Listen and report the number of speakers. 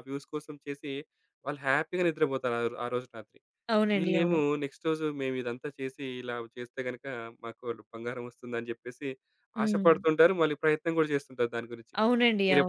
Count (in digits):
2